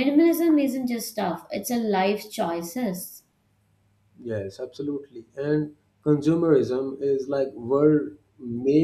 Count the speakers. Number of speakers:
two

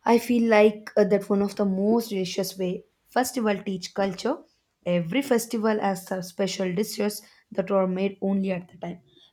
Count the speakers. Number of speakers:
one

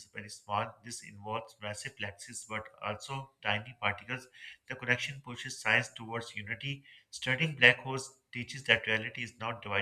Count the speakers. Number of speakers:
one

